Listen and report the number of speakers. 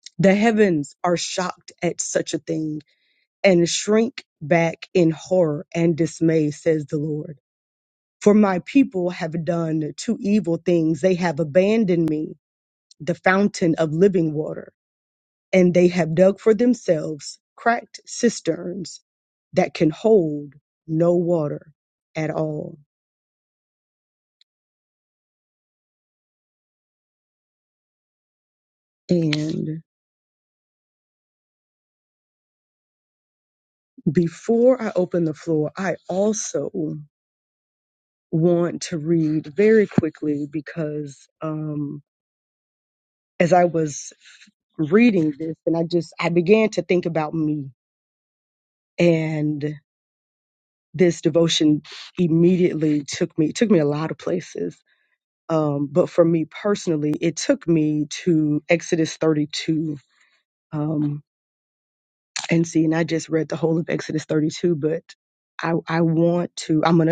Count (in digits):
1